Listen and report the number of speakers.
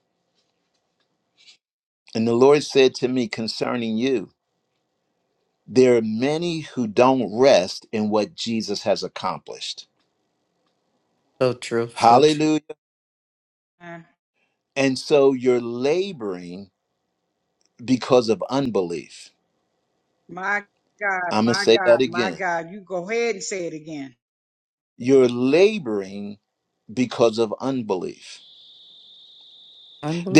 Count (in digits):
3